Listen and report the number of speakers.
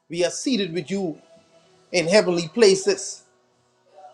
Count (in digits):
1